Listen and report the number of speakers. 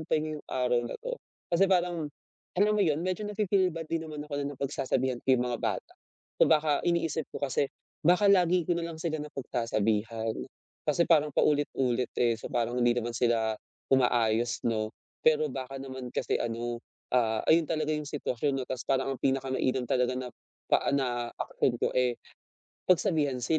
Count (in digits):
1